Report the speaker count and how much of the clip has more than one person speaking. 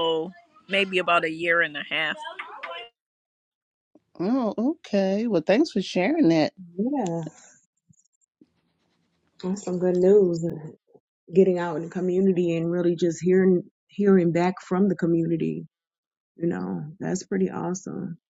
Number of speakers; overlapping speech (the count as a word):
three, no overlap